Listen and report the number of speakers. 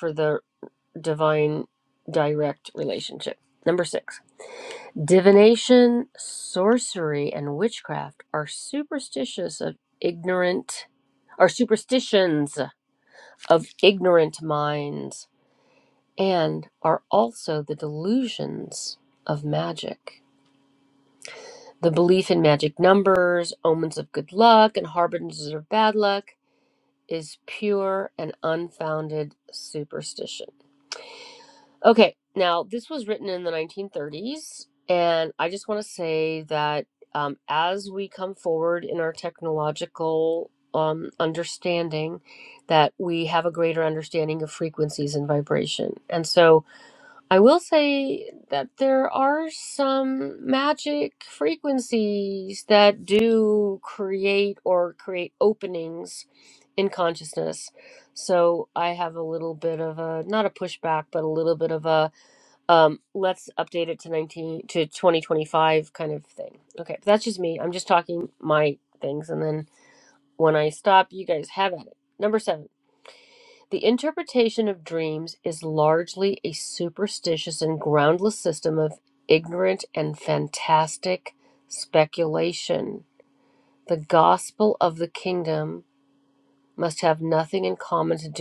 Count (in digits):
1